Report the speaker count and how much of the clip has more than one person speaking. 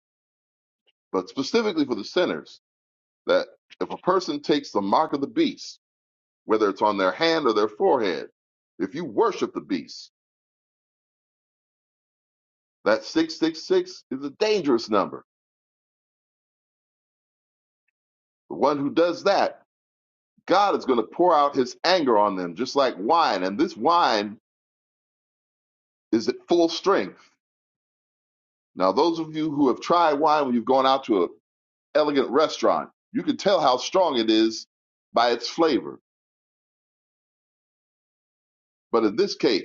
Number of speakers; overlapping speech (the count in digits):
1, no overlap